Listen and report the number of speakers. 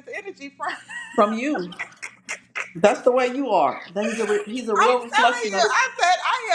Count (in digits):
2